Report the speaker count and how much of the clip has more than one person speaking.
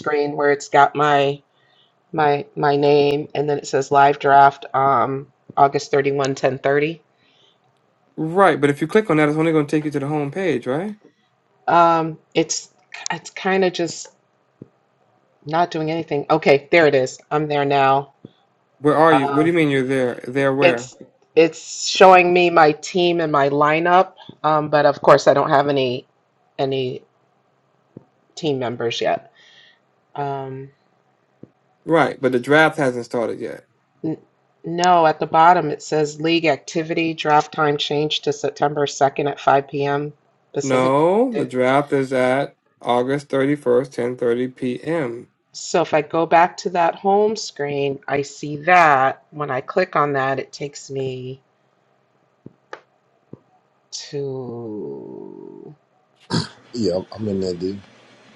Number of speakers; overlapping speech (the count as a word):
three, about 2%